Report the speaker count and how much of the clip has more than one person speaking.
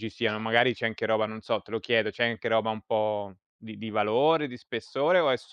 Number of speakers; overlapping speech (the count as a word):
one, no overlap